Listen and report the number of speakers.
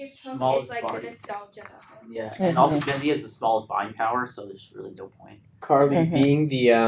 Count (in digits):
3